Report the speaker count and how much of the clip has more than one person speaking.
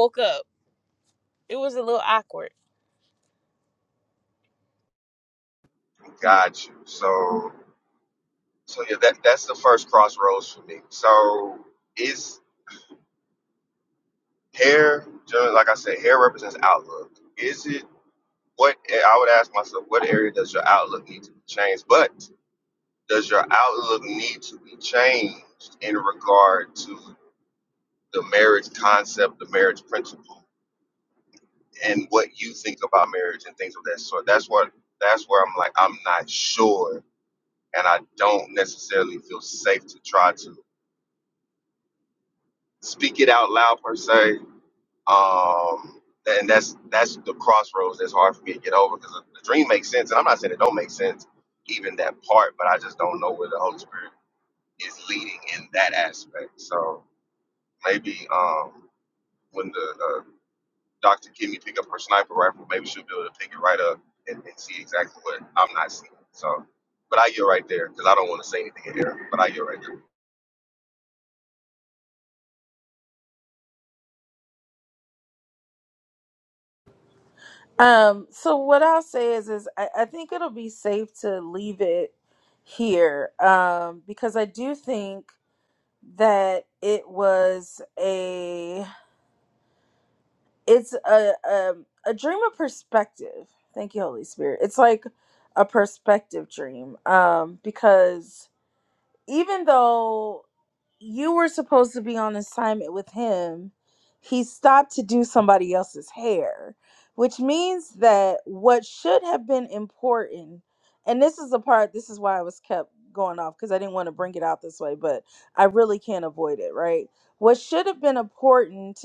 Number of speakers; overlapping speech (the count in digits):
3, no overlap